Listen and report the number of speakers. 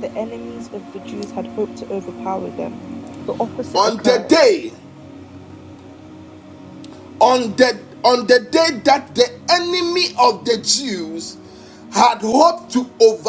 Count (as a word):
two